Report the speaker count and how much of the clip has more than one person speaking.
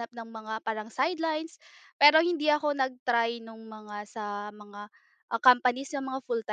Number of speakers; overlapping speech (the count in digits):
1, no overlap